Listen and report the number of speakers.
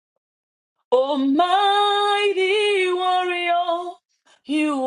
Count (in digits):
1